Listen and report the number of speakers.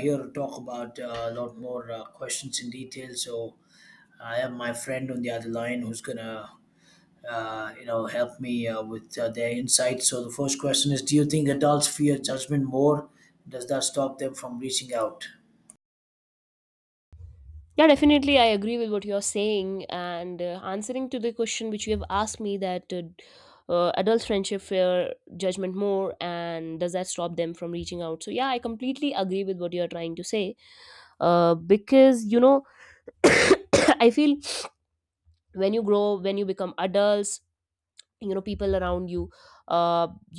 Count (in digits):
2